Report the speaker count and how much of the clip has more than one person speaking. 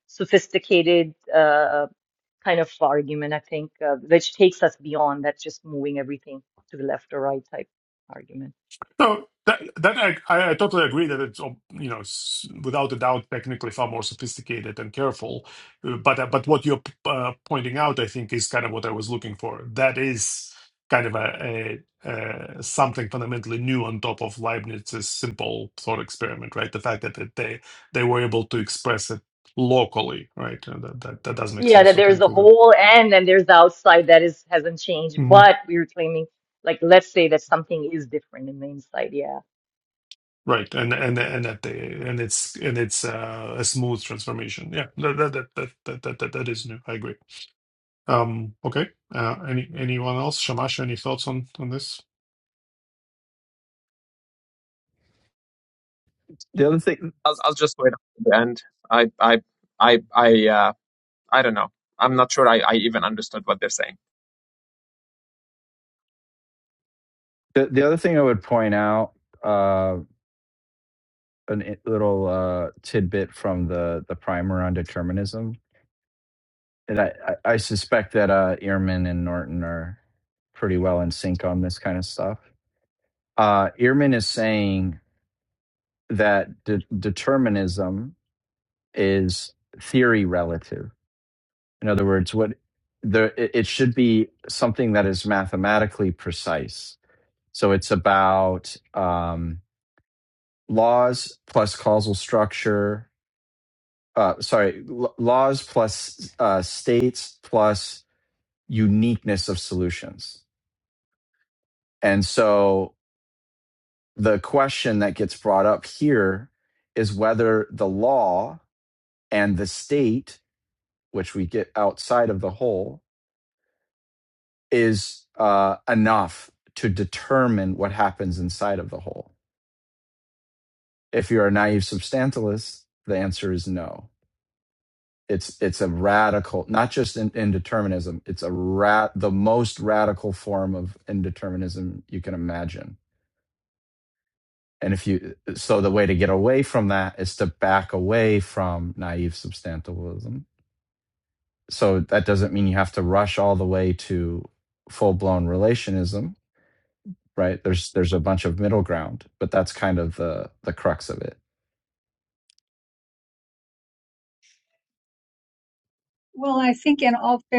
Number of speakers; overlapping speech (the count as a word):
five, about 1%